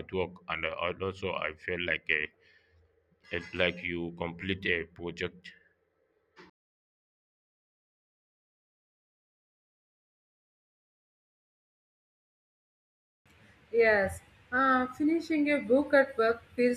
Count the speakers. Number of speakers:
2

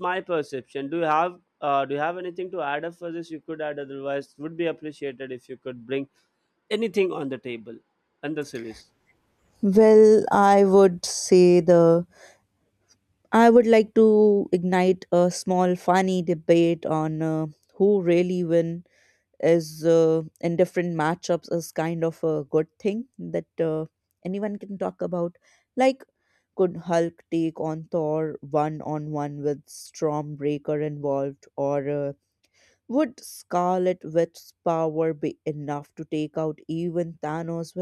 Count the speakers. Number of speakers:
2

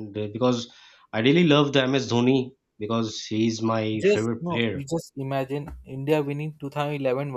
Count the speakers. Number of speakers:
2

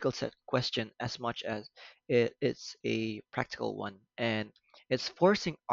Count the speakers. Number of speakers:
1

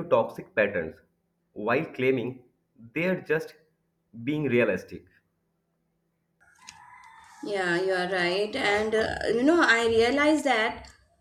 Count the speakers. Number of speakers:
2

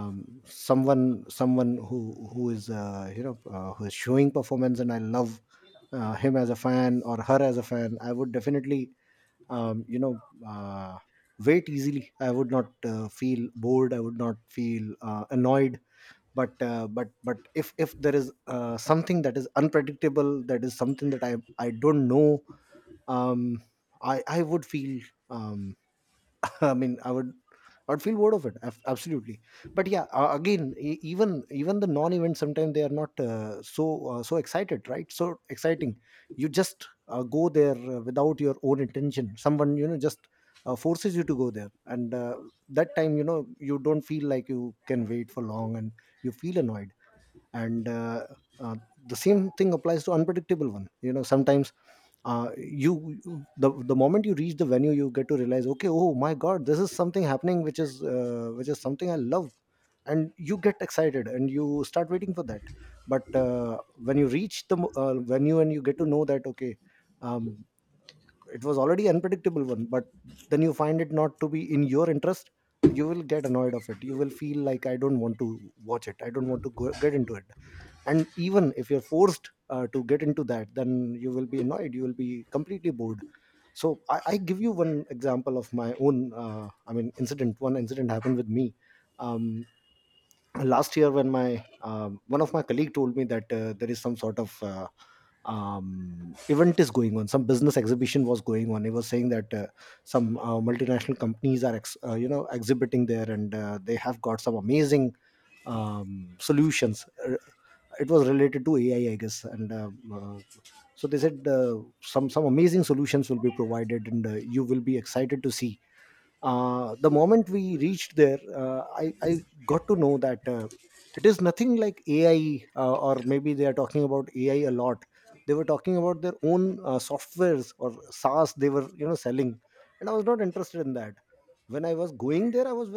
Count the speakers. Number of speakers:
1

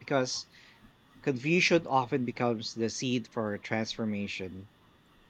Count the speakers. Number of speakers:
1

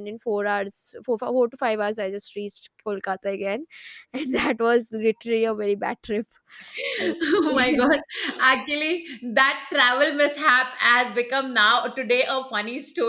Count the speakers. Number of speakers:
2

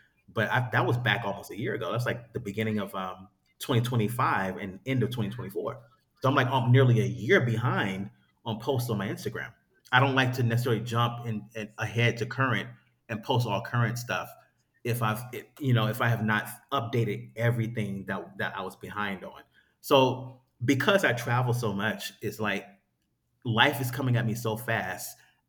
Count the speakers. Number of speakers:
1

